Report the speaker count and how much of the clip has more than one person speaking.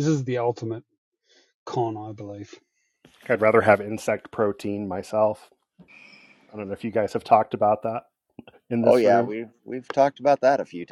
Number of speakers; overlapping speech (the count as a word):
three, about 4%